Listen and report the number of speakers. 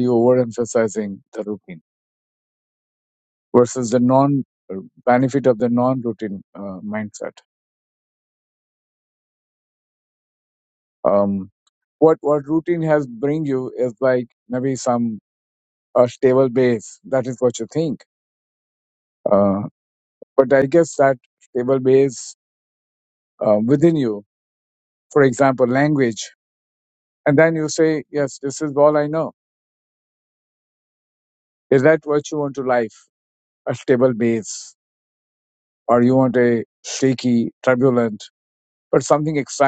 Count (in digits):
1